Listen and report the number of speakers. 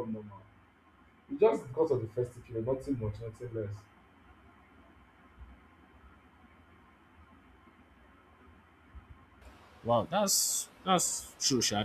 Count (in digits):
2